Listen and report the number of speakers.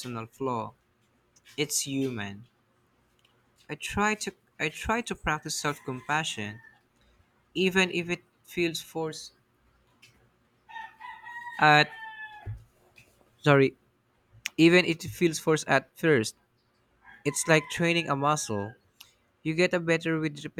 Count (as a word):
one